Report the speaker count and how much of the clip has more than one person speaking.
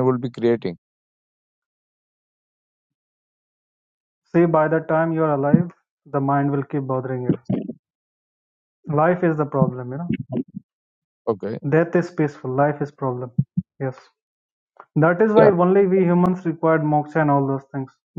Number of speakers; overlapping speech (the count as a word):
two, about 1%